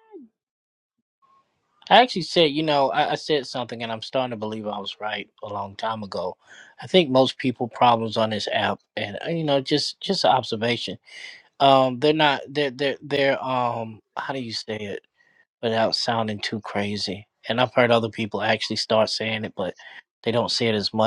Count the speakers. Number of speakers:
one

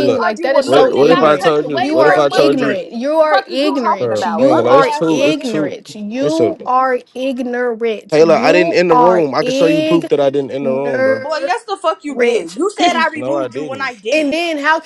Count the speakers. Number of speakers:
three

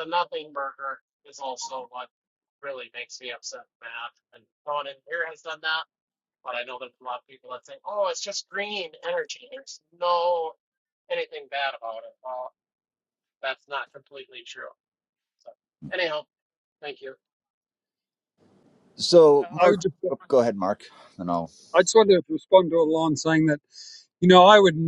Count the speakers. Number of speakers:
three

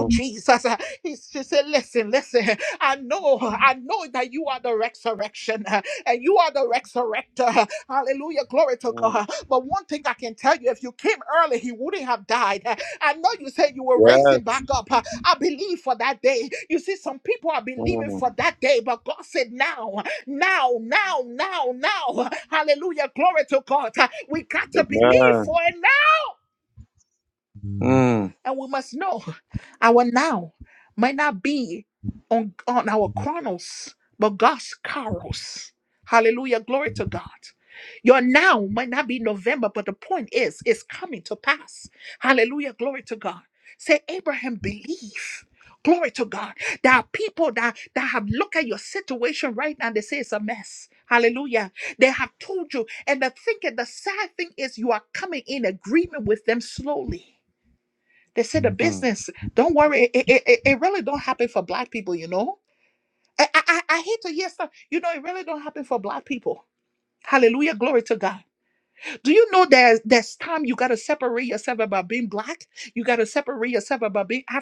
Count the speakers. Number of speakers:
two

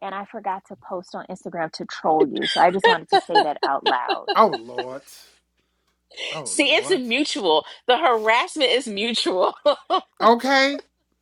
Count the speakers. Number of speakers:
three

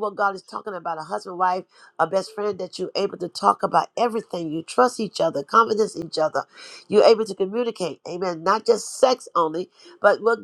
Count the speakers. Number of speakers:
one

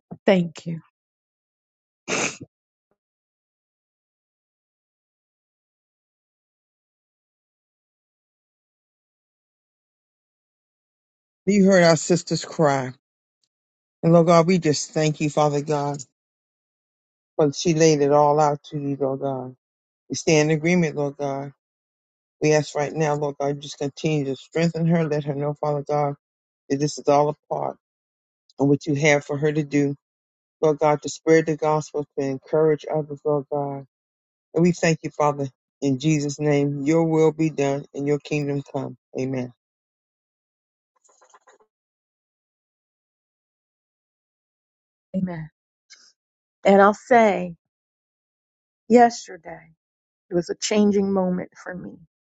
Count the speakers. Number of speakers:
two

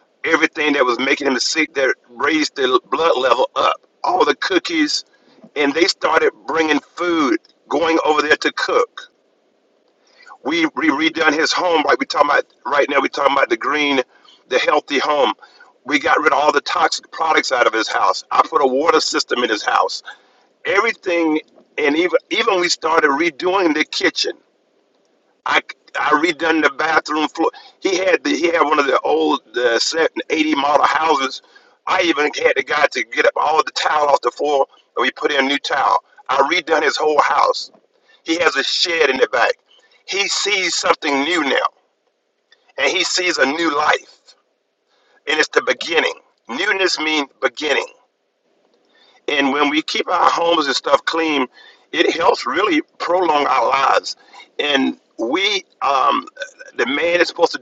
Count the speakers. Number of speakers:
one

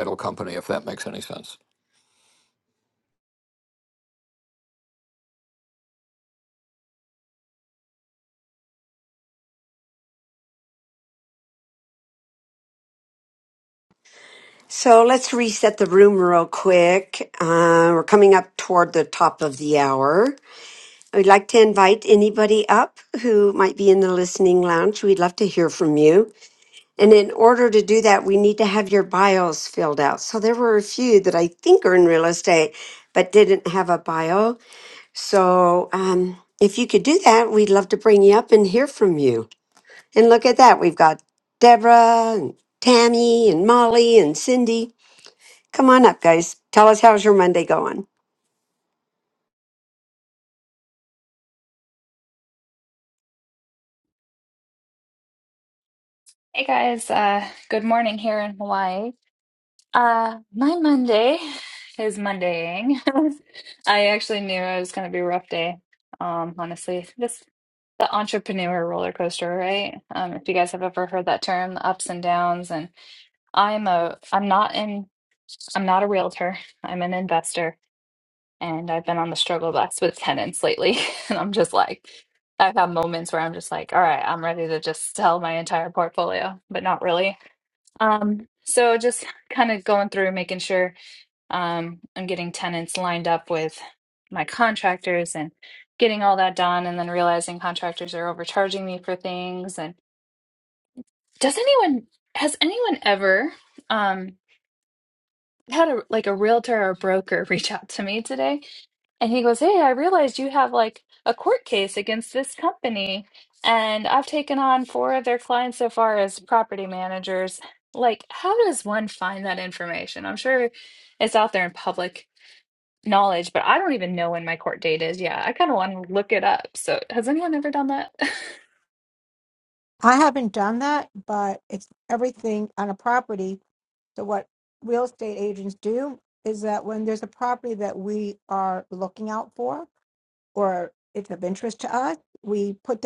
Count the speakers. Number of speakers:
four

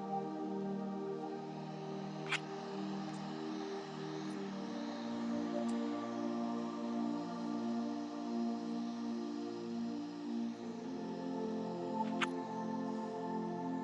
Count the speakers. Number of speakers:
zero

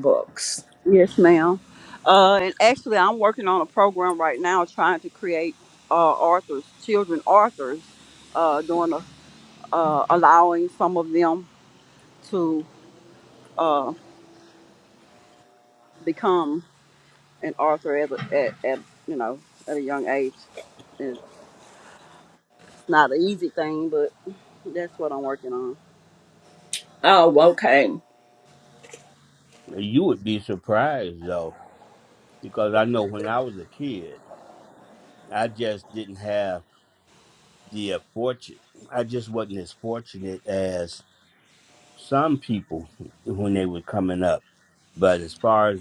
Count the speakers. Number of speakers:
three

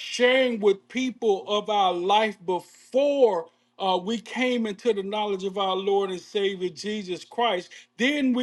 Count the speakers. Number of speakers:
one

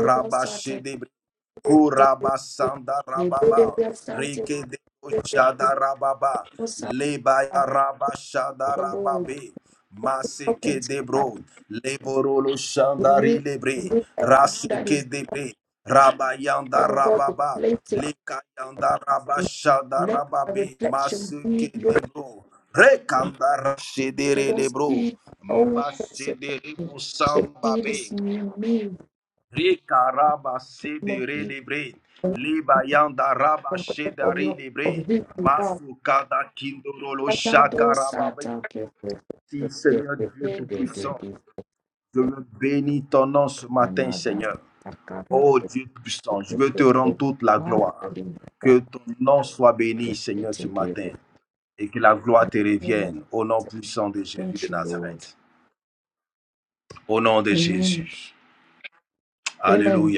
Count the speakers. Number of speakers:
two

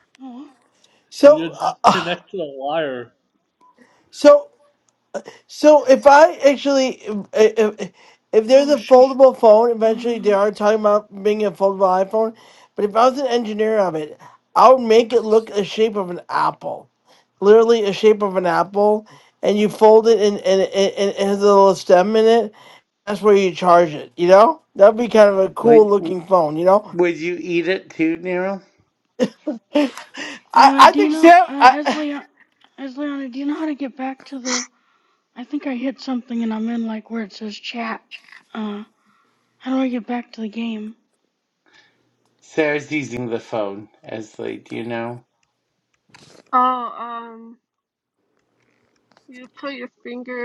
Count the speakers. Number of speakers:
five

